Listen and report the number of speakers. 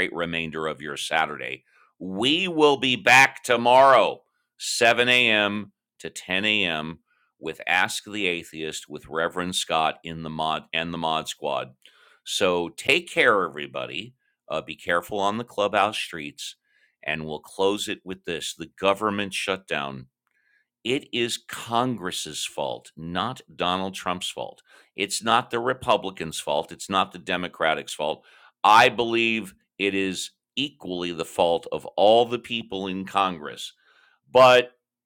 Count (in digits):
1